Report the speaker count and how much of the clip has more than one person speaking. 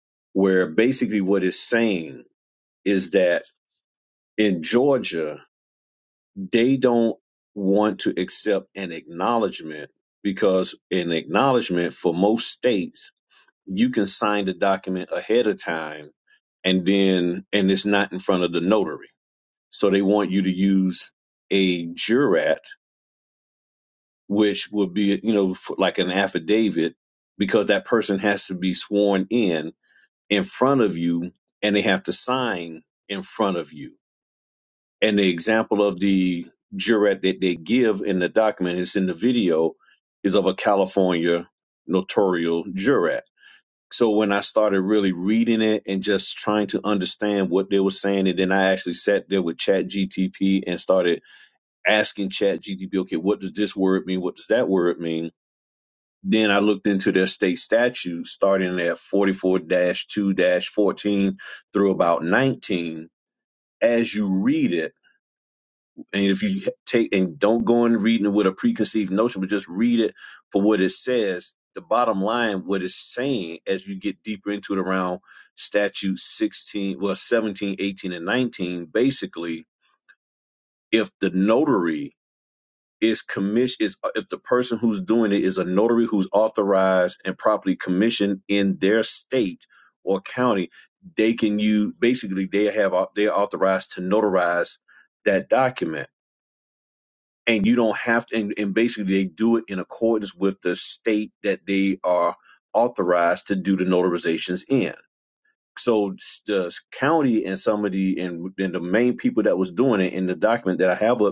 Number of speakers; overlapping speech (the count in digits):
1, no overlap